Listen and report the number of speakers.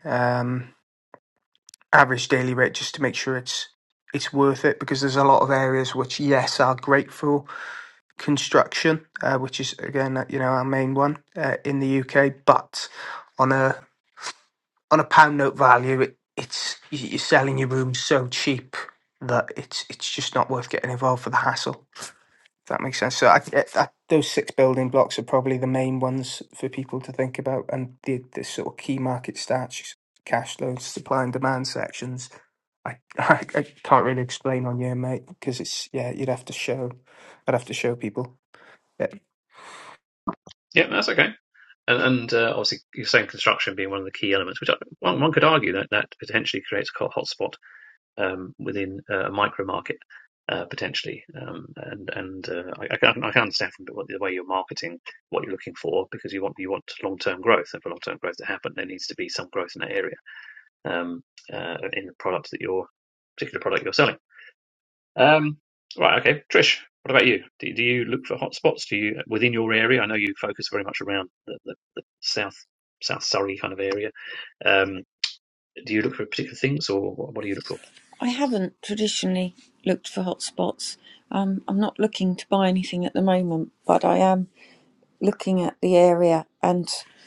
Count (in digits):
3